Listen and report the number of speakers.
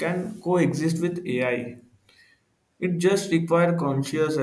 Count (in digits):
1